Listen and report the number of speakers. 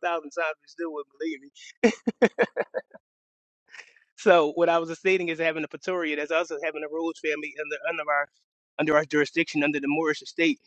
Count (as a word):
one